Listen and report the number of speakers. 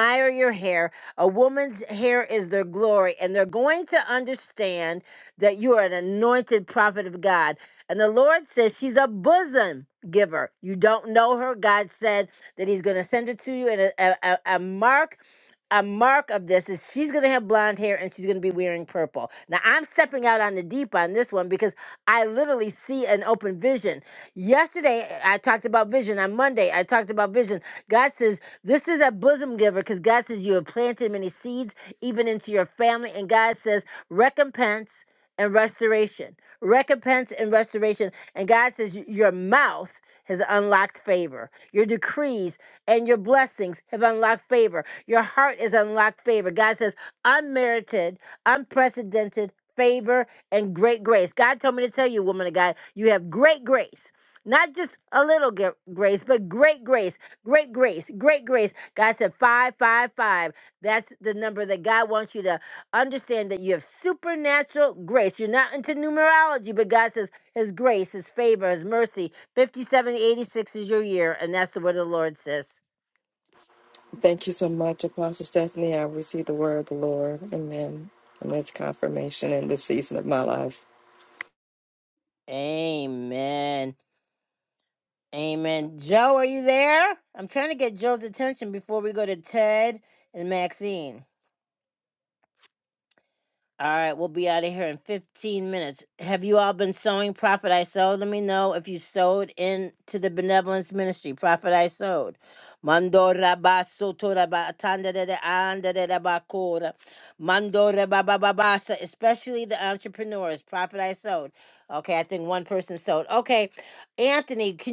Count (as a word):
two